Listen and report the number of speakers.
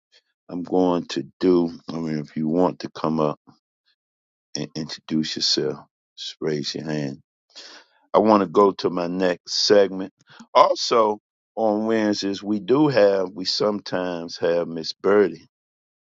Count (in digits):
1